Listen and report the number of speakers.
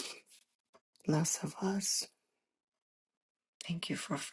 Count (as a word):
one